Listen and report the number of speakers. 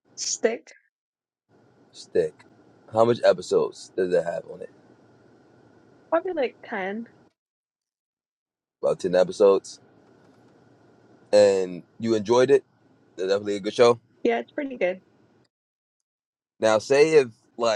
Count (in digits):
2